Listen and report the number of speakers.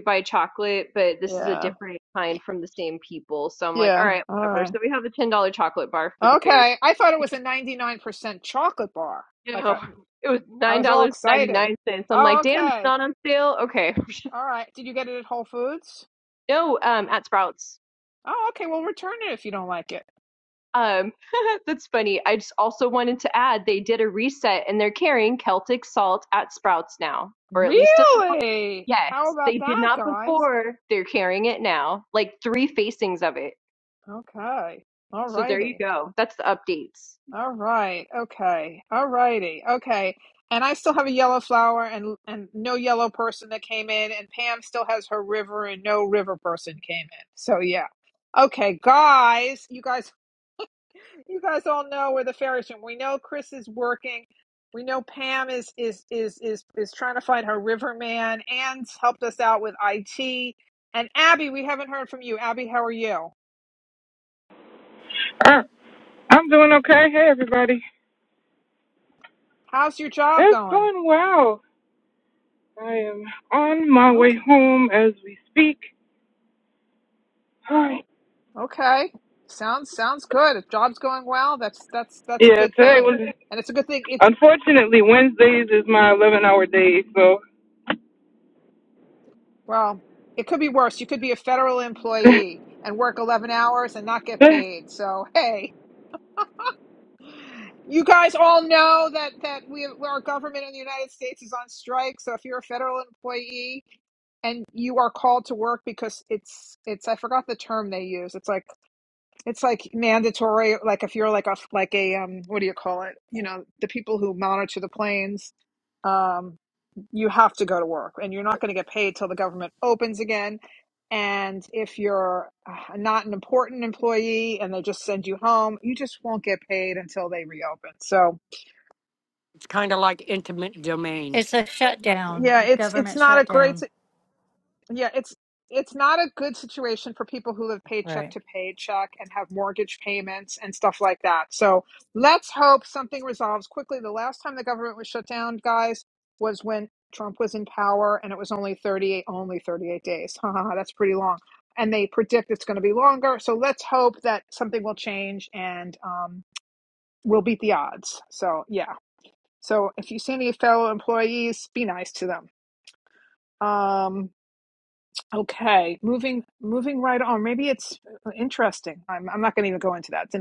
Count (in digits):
5